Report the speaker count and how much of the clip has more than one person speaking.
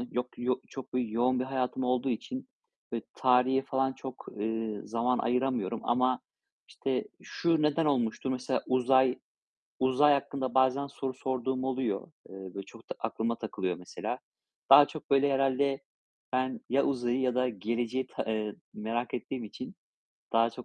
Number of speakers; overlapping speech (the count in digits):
1, no overlap